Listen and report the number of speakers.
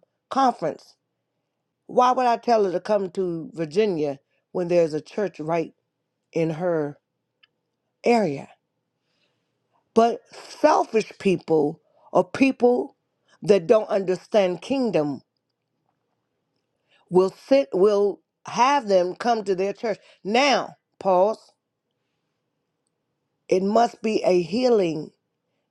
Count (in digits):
1